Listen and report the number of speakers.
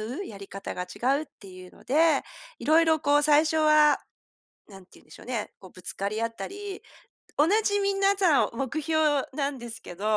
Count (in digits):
1